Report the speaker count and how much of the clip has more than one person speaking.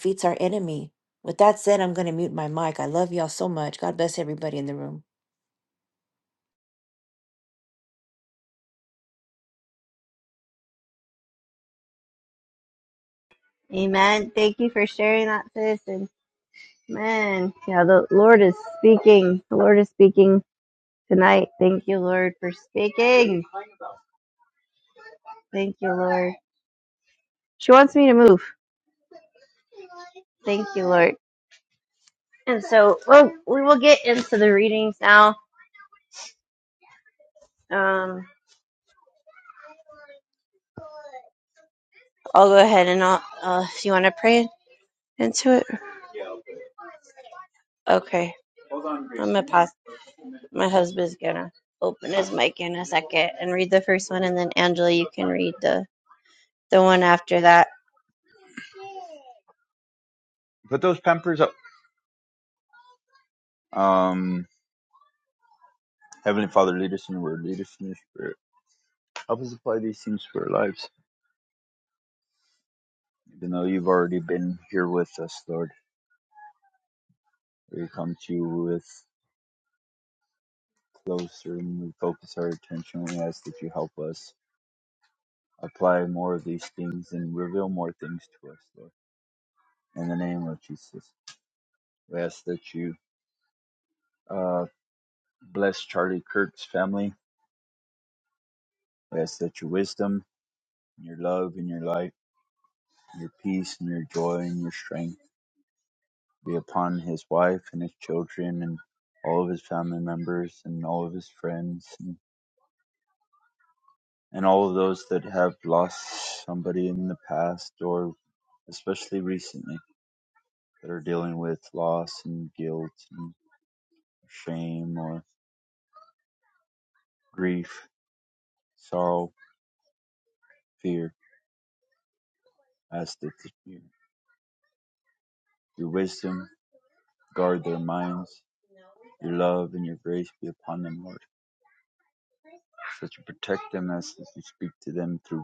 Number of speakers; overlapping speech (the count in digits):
3, no overlap